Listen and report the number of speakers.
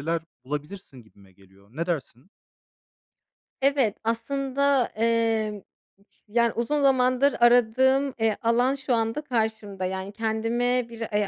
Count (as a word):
two